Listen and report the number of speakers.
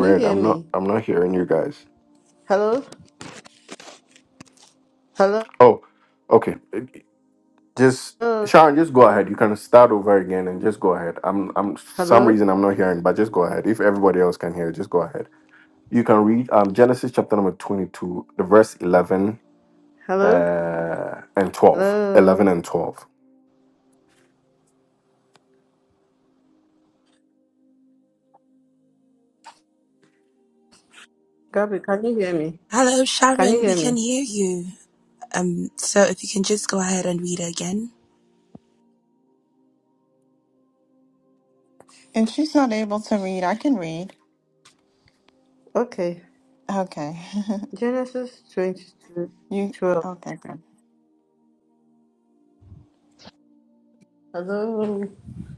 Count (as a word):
four